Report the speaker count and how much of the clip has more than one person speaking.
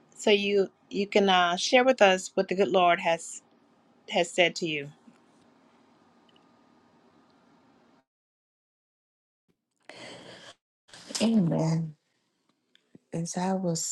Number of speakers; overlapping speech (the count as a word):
two, no overlap